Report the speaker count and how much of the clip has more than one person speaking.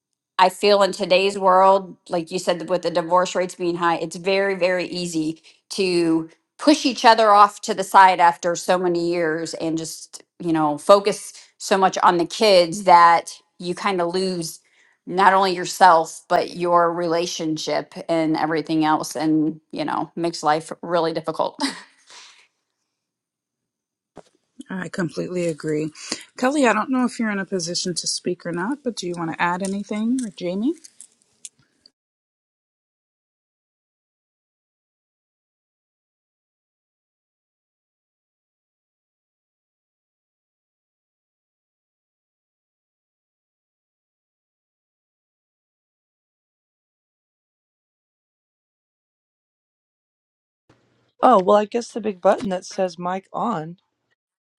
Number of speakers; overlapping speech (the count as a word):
three, no overlap